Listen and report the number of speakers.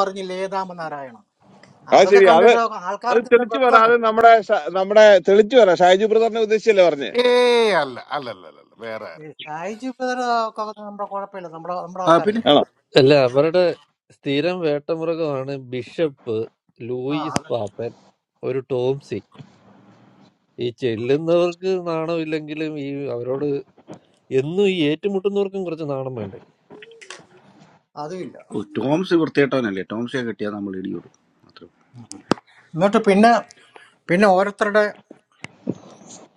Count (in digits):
5